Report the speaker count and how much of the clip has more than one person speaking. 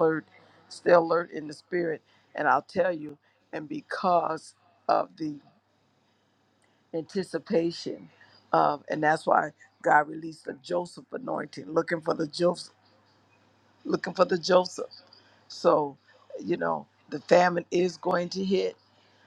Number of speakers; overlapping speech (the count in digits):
1, no overlap